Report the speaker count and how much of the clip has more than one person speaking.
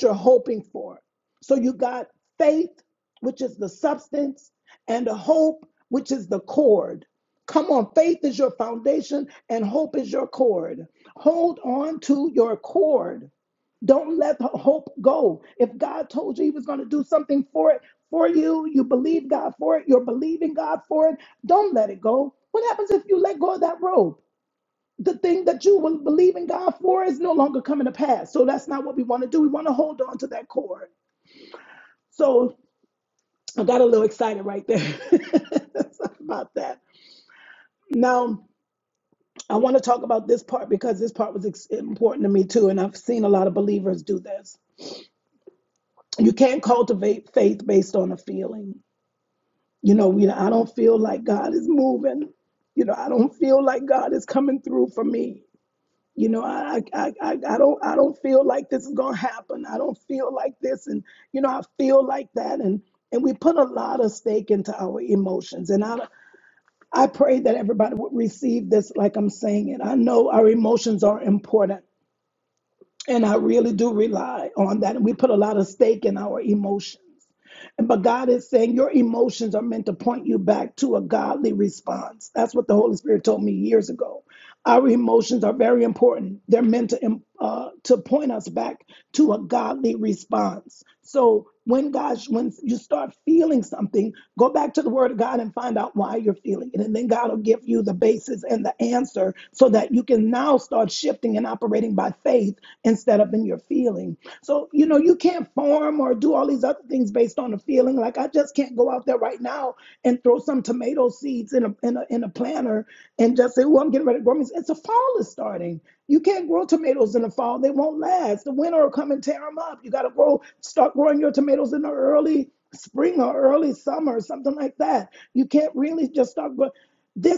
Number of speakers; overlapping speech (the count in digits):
1, no overlap